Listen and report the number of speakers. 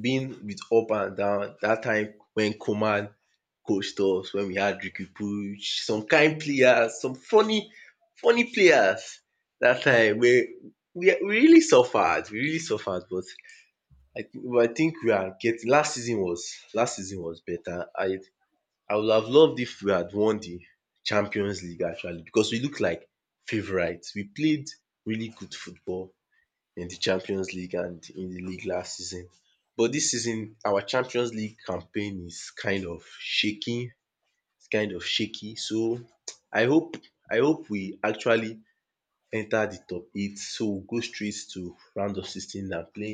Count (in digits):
1